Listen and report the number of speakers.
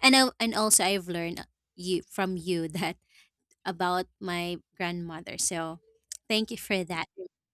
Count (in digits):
1